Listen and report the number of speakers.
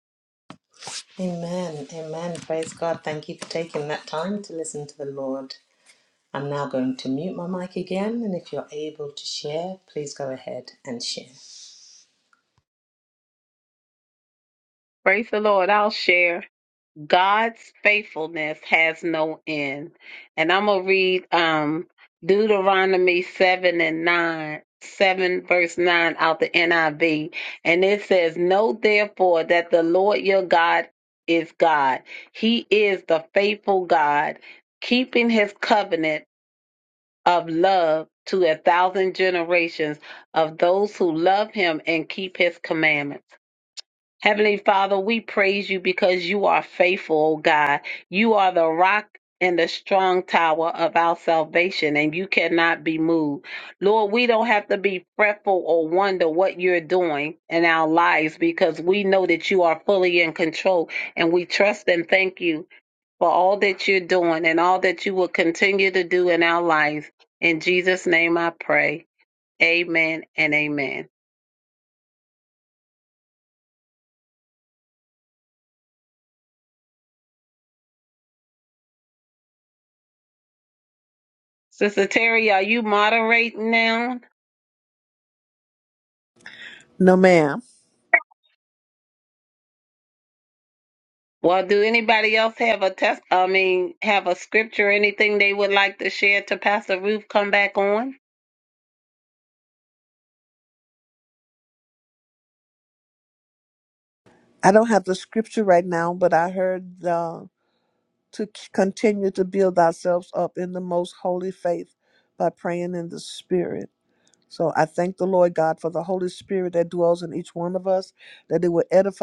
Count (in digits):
3